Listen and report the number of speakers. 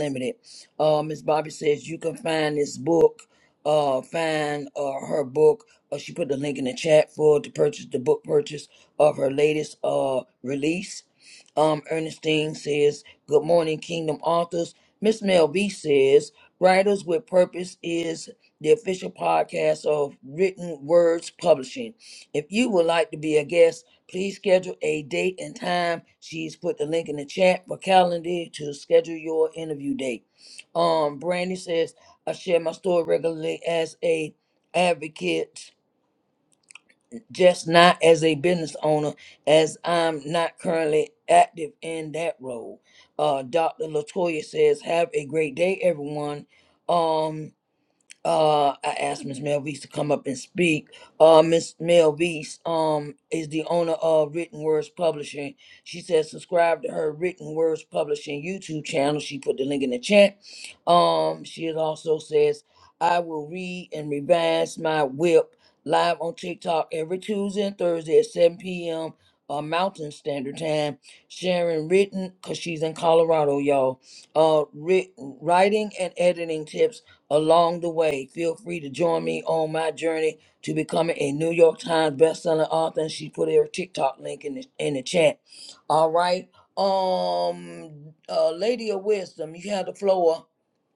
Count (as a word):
one